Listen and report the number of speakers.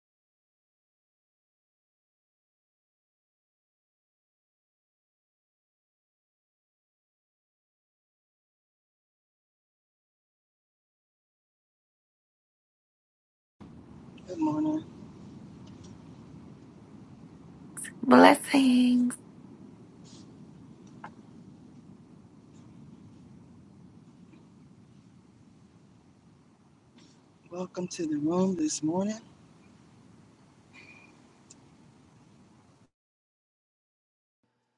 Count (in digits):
2